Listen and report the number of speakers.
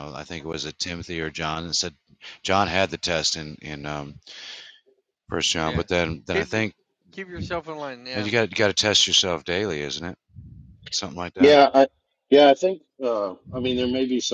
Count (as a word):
three